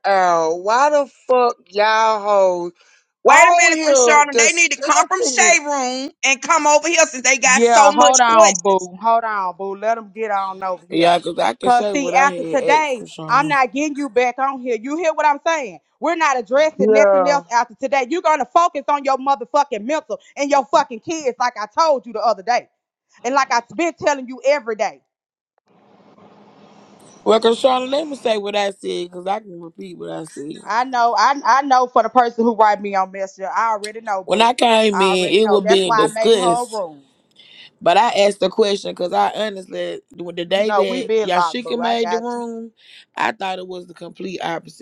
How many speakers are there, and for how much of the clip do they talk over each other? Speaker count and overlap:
four, about 22%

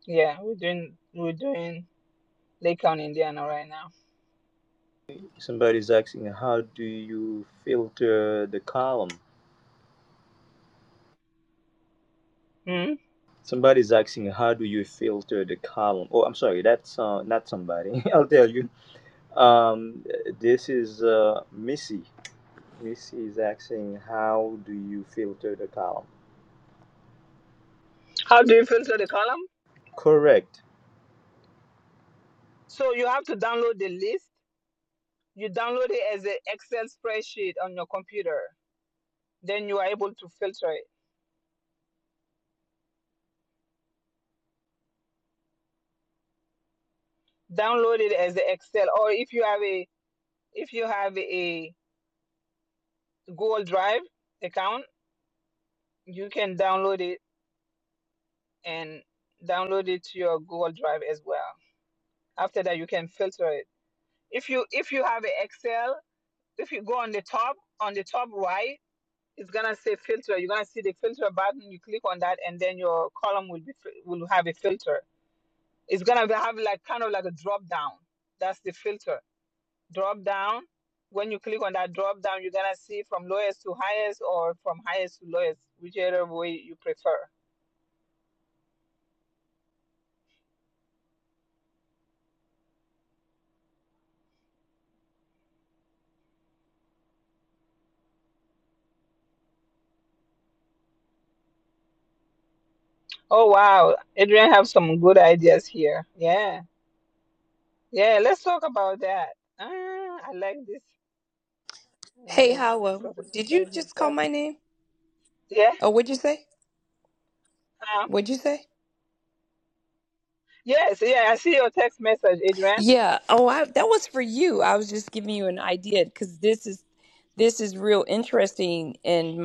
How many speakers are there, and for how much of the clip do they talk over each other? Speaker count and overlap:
three, about 1%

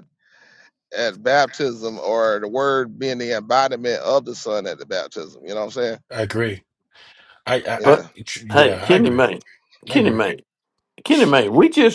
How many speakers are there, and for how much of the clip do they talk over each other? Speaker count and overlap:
three, about 11%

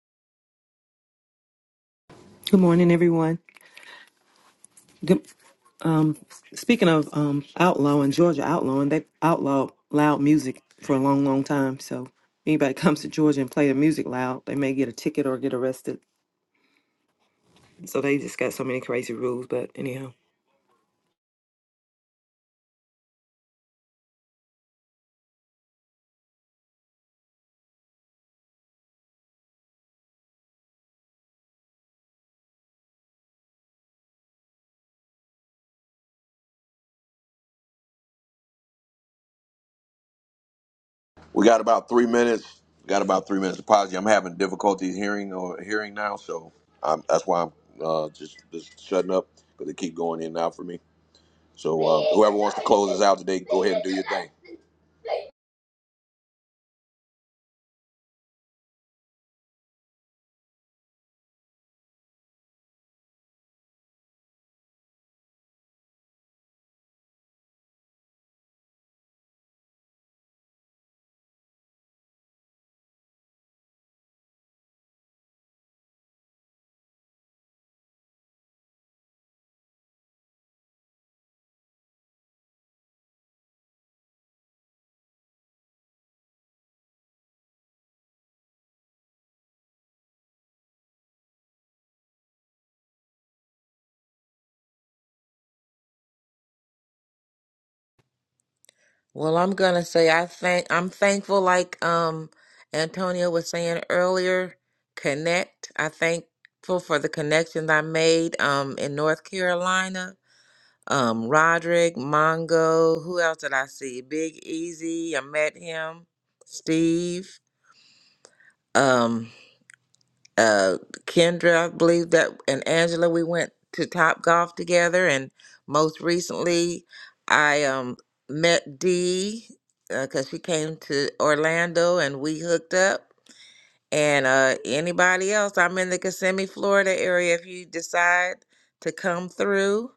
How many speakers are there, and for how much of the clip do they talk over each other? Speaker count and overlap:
three, no overlap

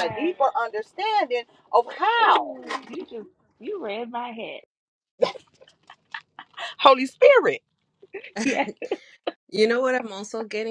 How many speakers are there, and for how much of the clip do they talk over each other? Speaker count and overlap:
three, about 10%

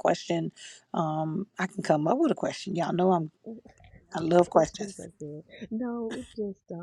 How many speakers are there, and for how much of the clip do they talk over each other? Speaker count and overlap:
two, about 6%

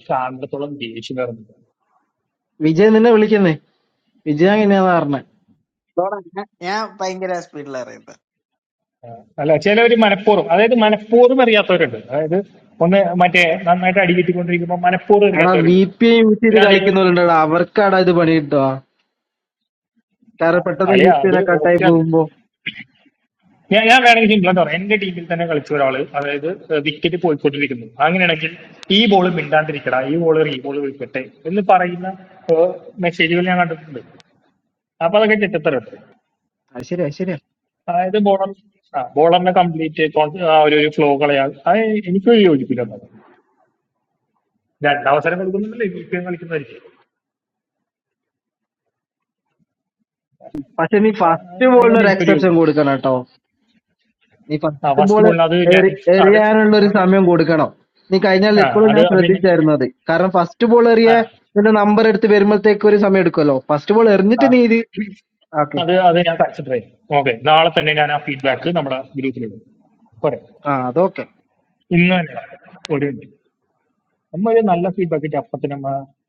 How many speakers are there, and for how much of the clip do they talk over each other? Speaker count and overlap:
three, about 7%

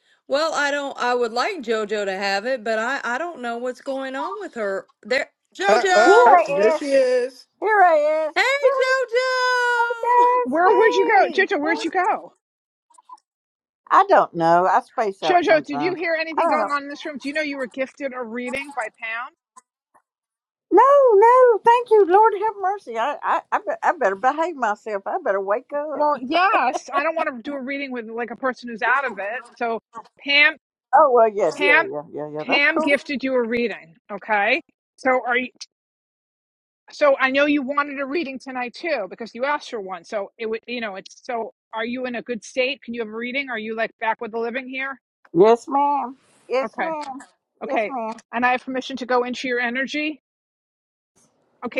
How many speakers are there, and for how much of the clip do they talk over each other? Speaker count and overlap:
four, about 11%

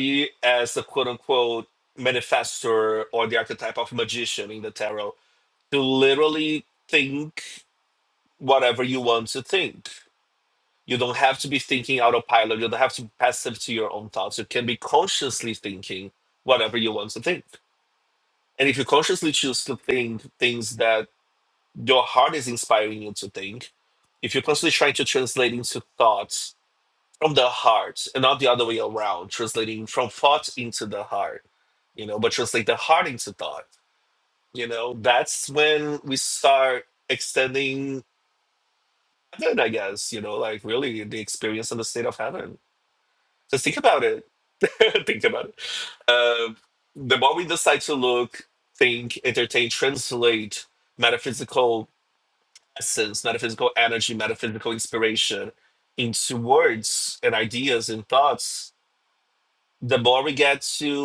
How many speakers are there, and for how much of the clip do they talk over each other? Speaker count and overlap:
one, no overlap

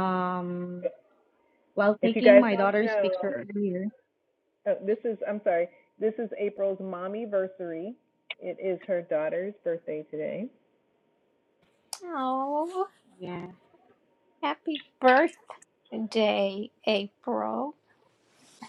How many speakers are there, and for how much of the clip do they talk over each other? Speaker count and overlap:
three, about 6%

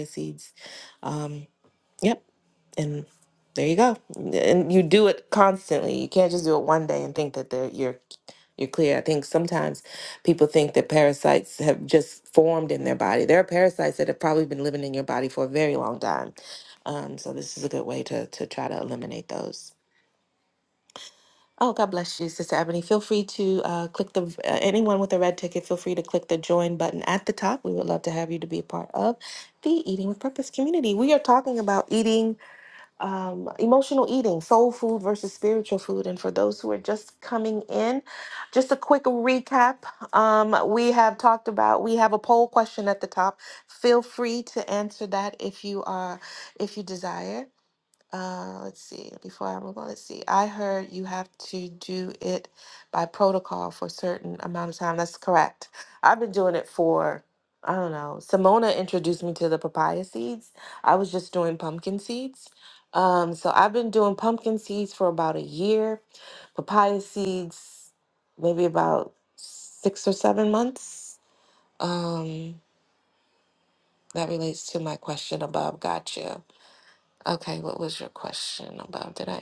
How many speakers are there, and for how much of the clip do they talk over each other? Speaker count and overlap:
one, no overlap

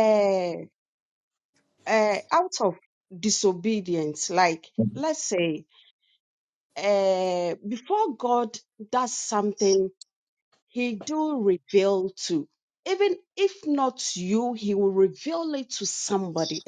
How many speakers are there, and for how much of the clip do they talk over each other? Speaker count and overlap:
one, no overlap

